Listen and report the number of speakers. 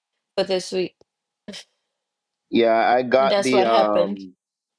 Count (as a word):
two